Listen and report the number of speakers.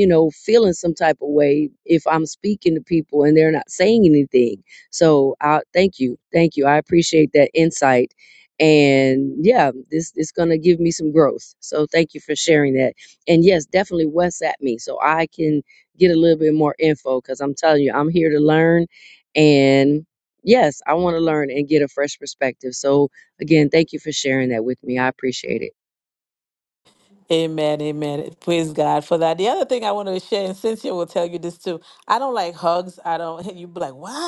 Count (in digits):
2